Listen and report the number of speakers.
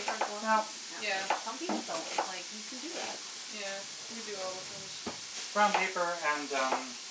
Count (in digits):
3